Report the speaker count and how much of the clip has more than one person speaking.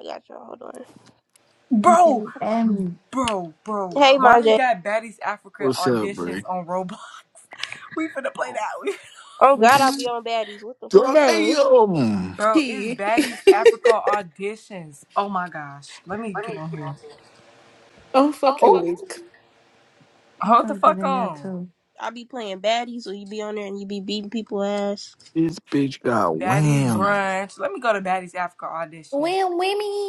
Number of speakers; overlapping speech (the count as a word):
five, about 19%